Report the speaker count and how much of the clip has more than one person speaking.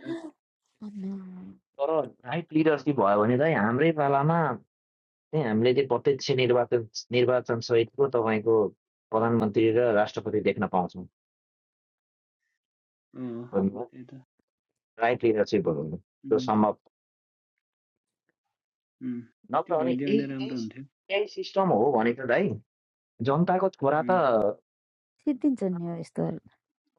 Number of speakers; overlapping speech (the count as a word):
three, about 5%